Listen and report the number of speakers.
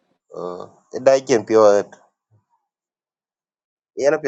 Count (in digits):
1